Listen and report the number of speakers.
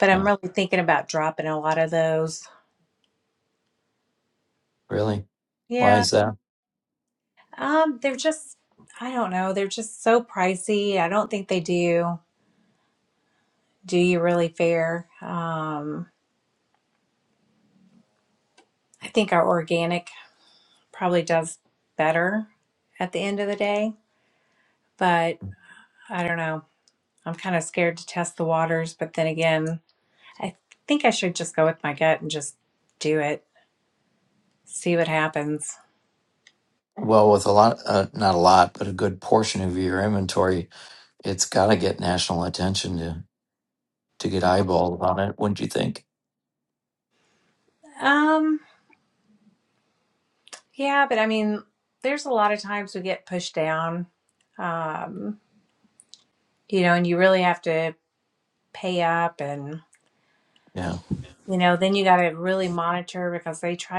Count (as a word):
two